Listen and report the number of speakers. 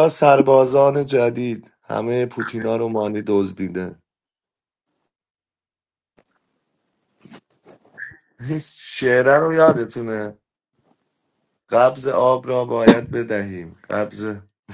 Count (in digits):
1